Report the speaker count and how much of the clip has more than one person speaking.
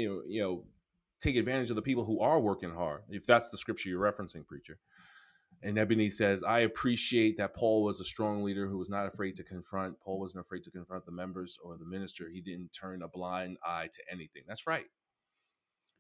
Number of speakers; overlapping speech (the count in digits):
1, no overlap